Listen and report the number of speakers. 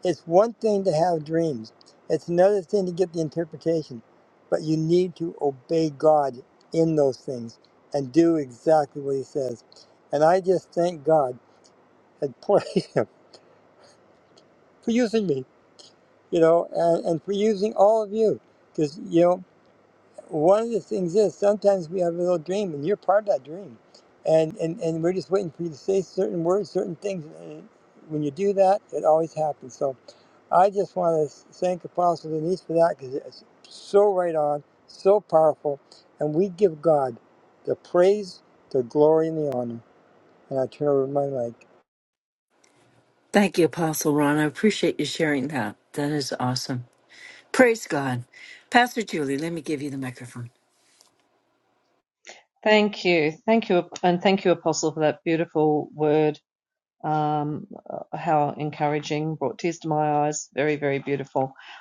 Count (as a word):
three